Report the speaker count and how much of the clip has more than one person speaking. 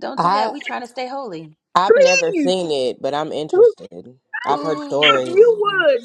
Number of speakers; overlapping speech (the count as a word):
three, about 38%